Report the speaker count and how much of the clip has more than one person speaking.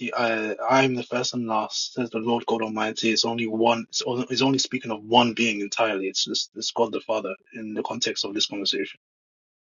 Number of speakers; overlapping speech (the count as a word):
one, no overlap